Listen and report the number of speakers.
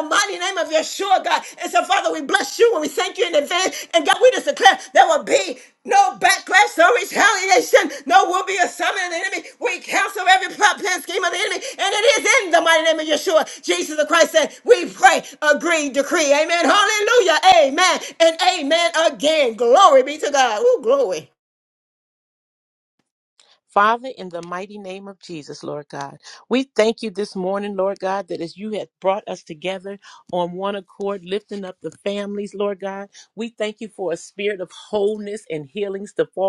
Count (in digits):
2